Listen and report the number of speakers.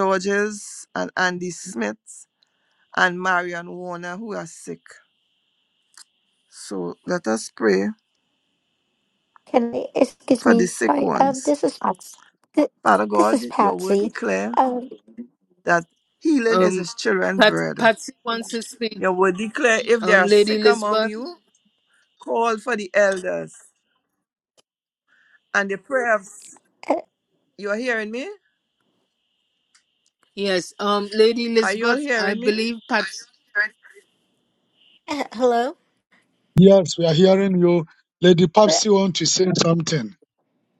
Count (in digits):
4